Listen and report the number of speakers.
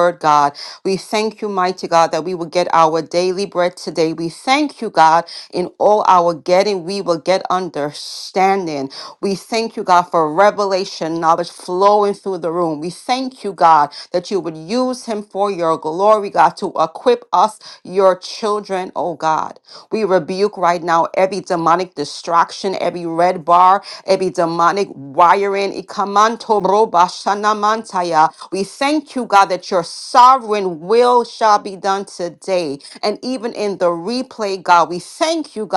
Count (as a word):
one